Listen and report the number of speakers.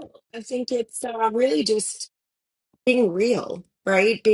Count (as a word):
one